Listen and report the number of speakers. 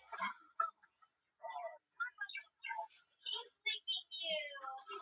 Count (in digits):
0